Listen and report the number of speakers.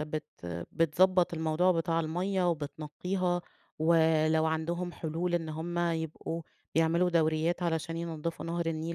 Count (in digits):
1